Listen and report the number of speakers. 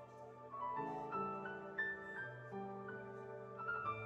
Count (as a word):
zero